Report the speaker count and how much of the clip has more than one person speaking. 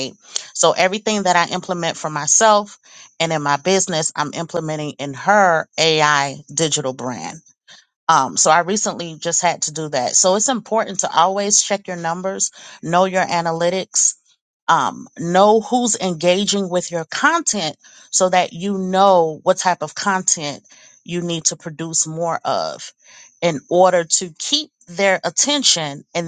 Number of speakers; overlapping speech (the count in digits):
1, no overlap